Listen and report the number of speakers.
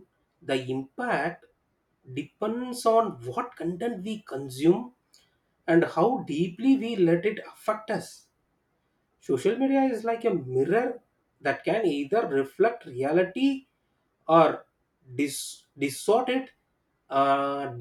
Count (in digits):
1